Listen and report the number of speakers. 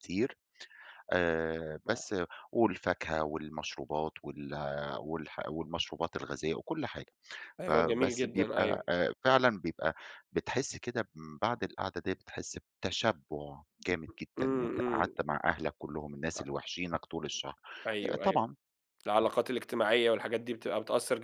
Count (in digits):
2